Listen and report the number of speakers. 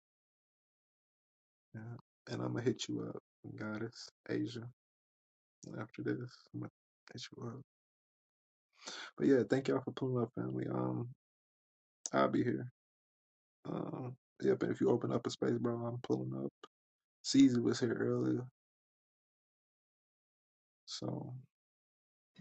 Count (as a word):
one